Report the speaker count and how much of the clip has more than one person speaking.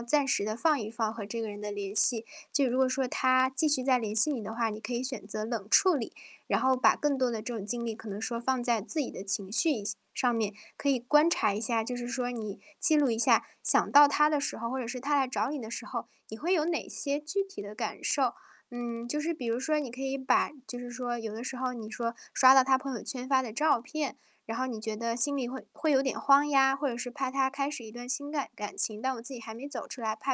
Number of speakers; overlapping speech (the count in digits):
1, no overlap